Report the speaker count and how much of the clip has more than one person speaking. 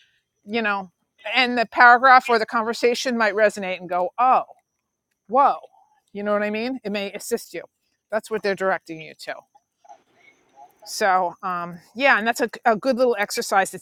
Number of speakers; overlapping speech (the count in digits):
1, no overlap